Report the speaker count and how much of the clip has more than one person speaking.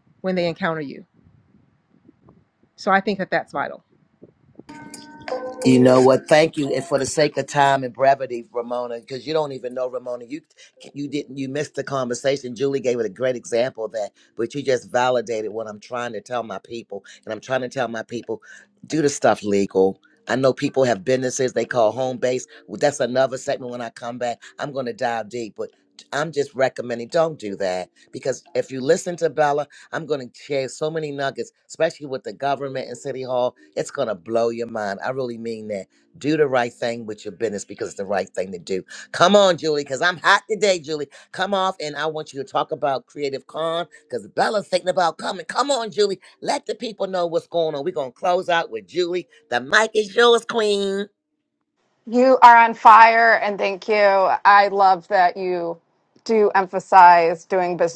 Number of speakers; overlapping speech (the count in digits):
3, no overlap